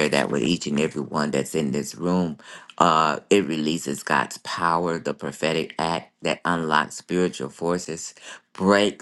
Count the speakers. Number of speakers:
1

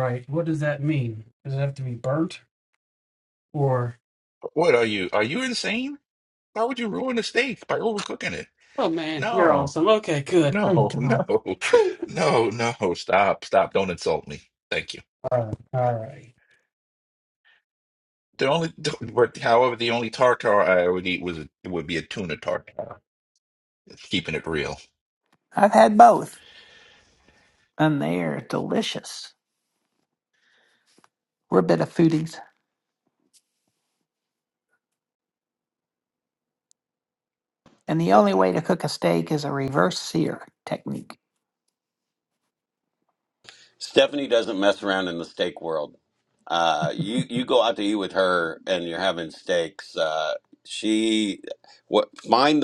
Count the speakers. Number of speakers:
4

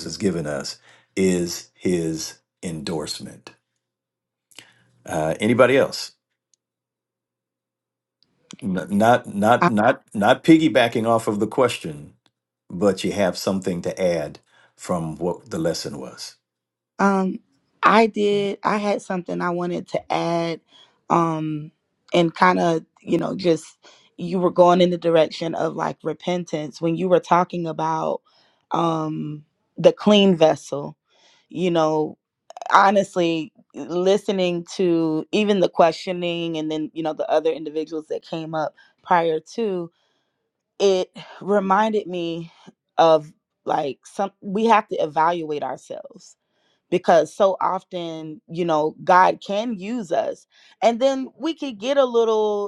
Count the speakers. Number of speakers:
2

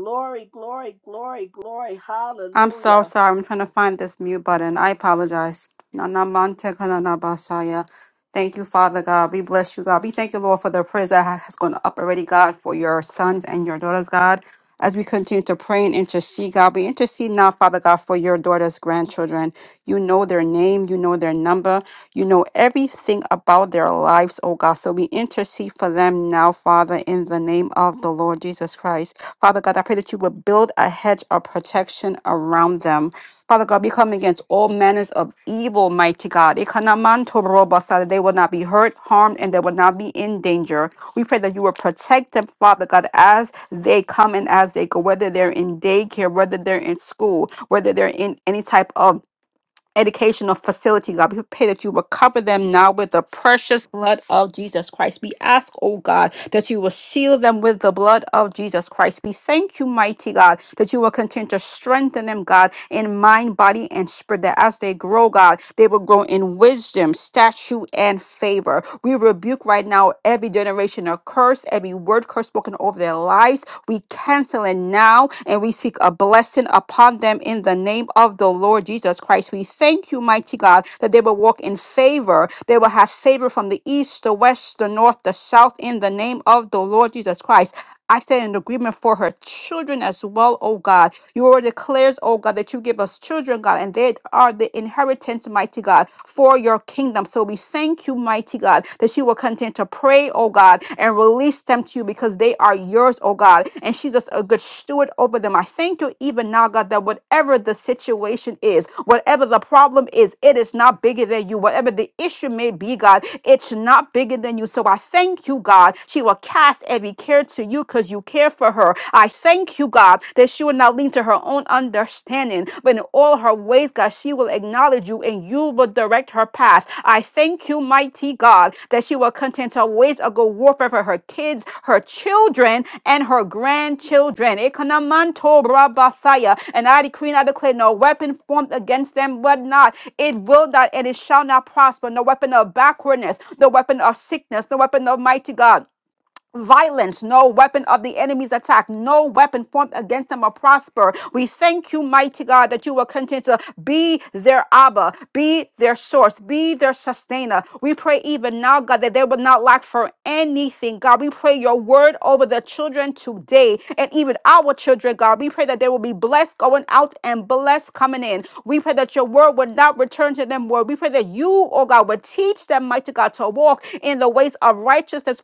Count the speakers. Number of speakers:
2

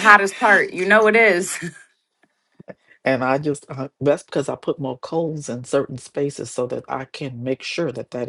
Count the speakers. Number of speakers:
2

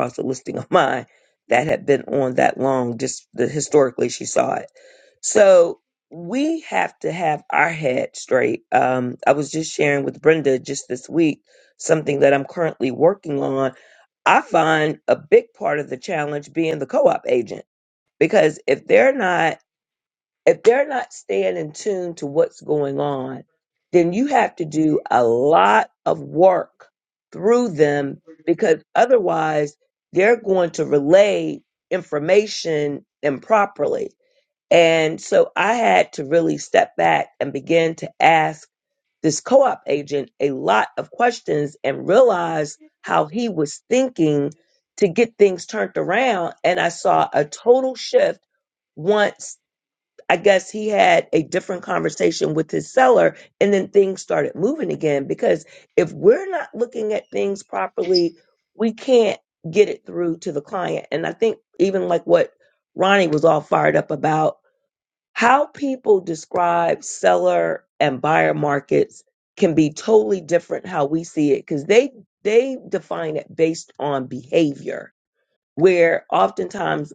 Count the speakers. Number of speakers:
1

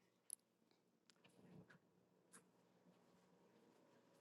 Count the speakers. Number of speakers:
0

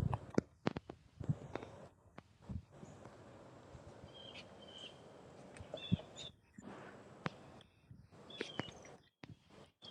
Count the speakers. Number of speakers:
0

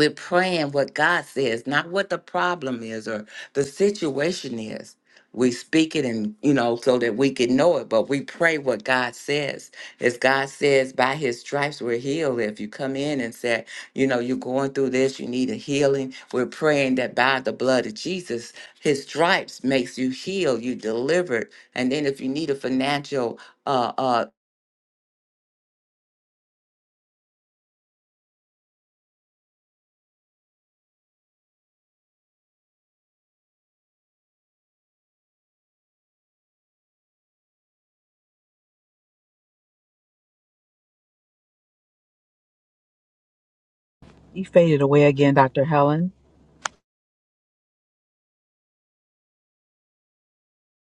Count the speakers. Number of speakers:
2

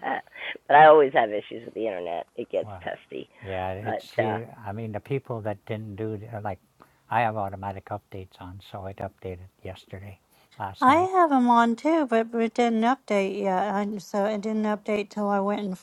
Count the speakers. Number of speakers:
3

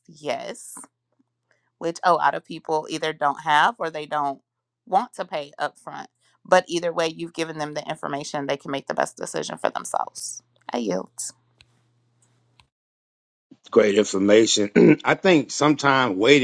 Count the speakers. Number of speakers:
2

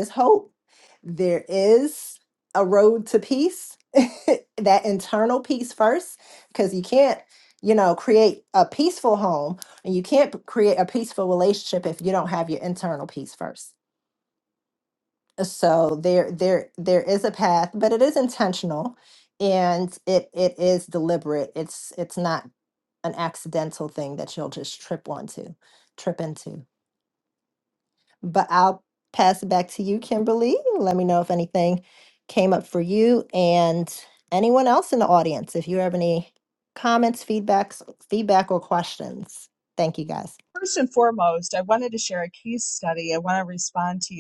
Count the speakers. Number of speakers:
2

